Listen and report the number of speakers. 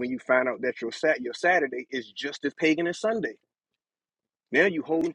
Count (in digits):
1